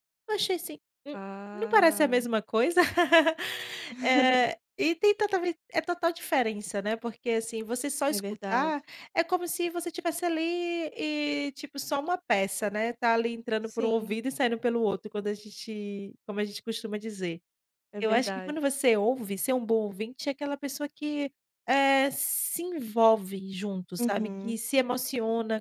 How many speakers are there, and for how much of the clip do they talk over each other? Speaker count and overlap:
2, about 11%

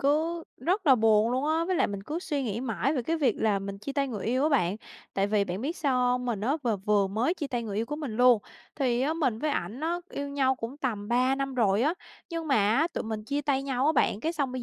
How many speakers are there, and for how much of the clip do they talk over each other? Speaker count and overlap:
1, no overlap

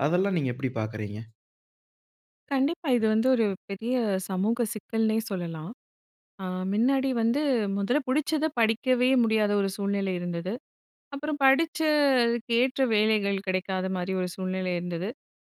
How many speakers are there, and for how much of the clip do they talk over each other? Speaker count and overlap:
2, no overlap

